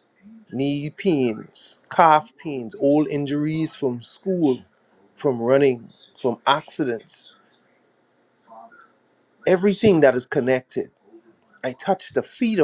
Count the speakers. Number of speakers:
1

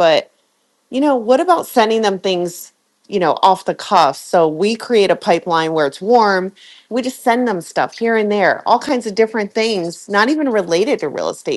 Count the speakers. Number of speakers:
1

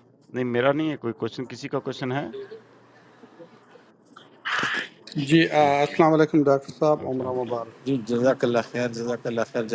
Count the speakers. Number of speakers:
3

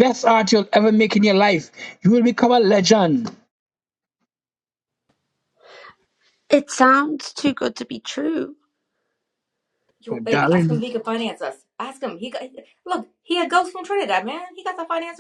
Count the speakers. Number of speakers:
3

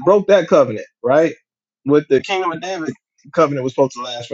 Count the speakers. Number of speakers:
1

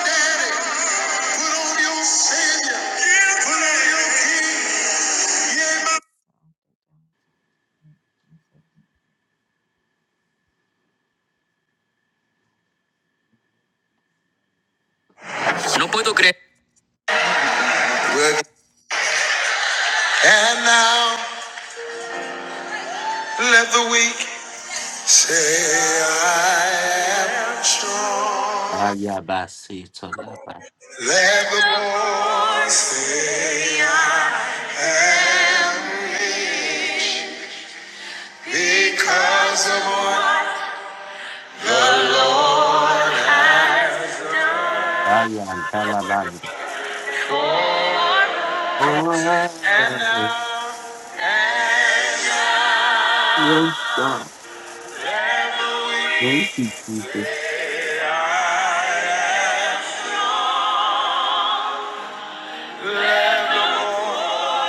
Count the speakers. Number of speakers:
2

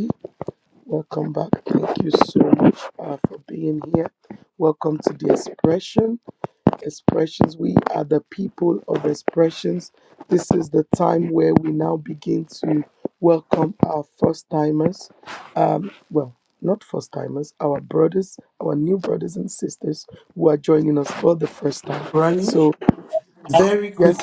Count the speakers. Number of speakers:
2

